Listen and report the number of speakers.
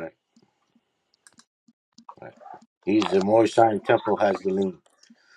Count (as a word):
one